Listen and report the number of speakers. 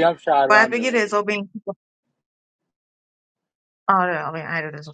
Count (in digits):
2